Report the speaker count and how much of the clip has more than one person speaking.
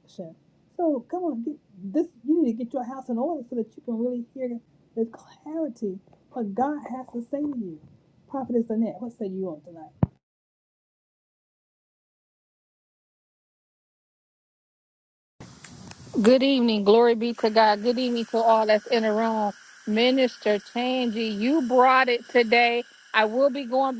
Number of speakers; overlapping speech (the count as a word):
two, no overlap